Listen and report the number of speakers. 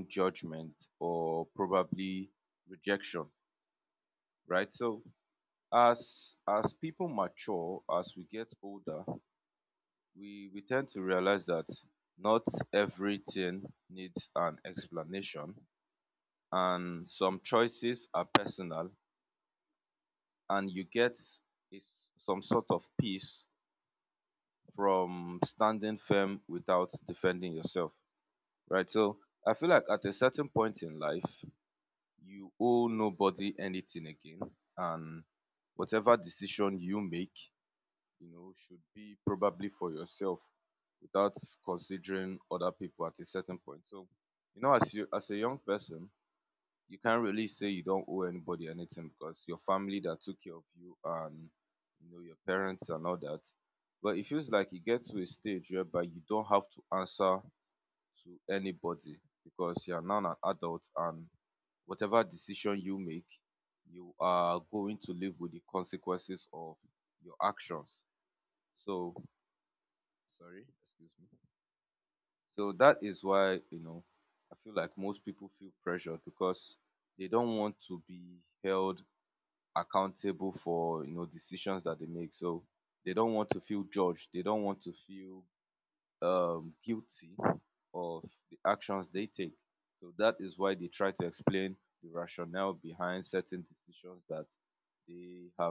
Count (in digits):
1